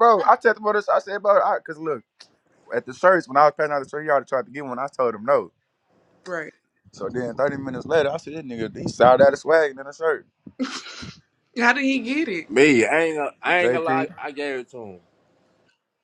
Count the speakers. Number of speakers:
3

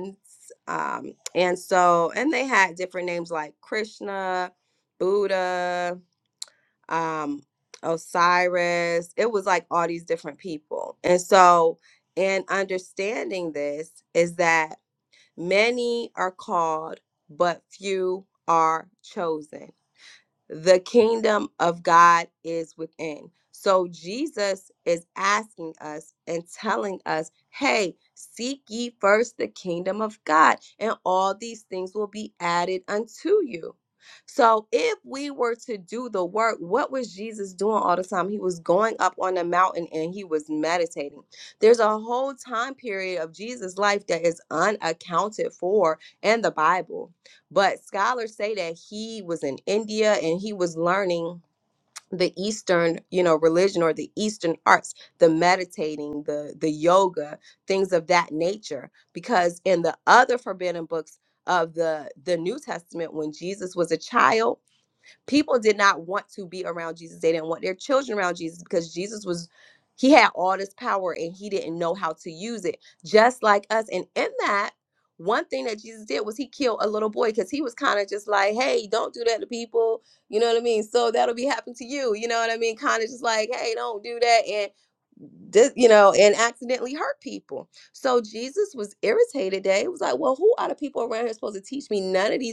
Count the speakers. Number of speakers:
1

